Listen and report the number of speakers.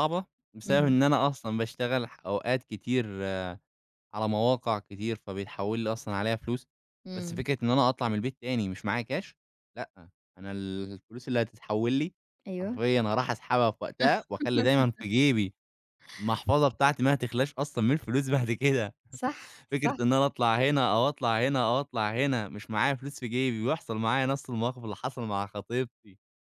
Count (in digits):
2